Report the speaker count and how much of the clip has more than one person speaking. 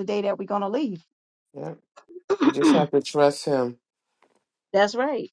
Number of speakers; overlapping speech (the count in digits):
2, no overlap